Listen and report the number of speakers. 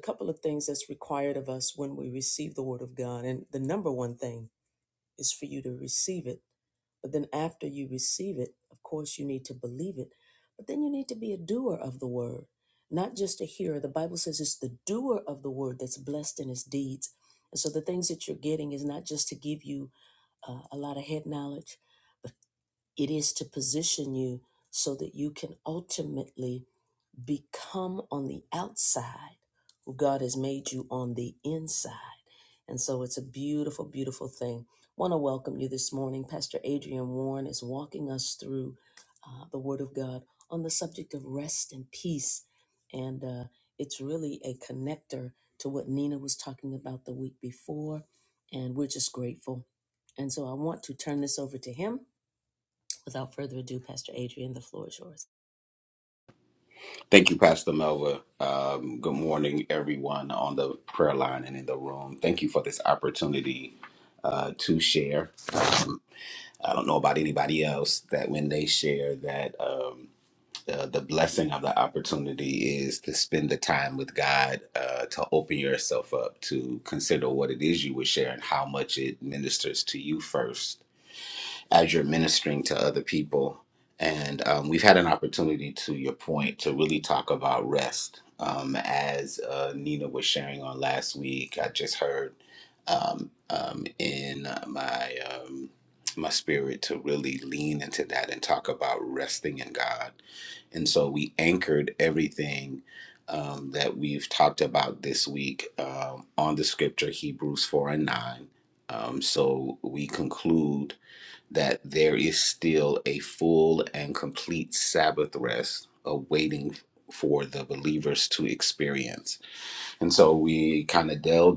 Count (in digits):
2